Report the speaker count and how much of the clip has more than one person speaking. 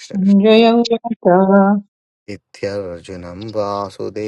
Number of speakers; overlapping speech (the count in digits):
2, about 5%